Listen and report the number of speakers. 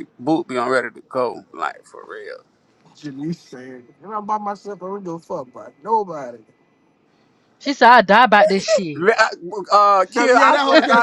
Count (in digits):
3